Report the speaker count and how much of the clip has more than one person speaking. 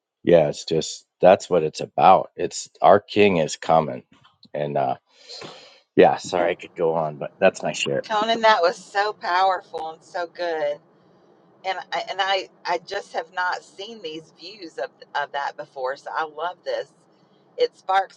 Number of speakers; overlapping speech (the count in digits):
2, under 1%